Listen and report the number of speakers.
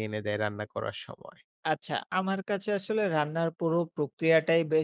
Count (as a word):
two